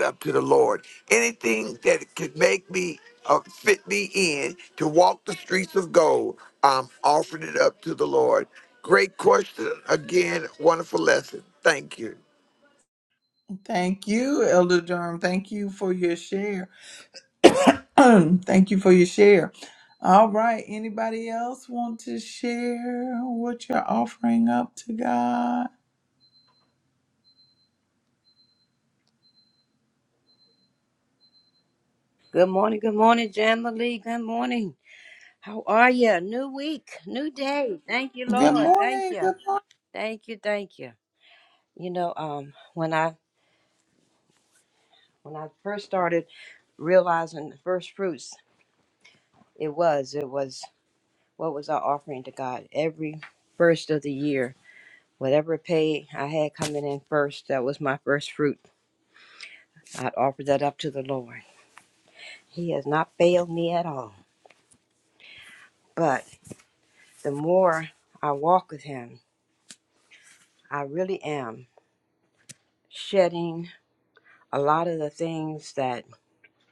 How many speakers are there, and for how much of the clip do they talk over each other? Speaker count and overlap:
3, about 1%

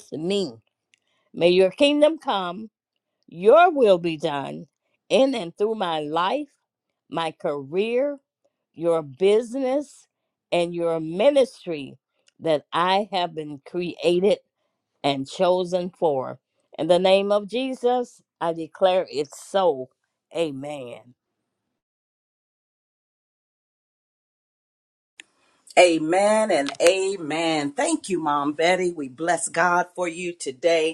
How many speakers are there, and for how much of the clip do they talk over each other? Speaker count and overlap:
2, no overlap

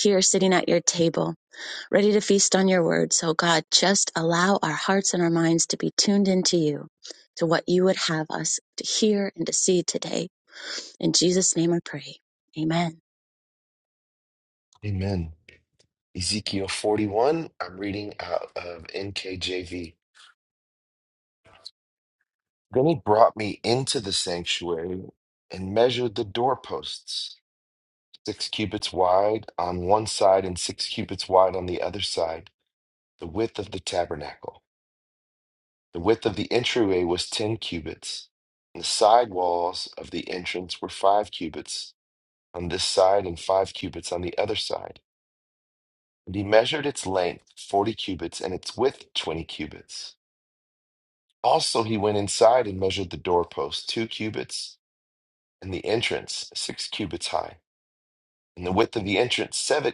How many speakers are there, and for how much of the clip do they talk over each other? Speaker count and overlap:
2, no overlap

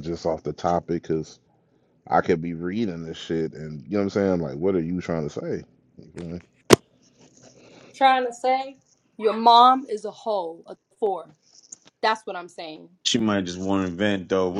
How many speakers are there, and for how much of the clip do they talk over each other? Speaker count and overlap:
3, no overlap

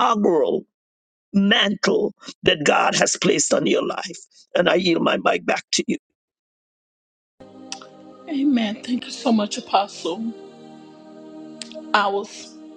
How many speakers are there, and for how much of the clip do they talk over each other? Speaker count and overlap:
2, no overlap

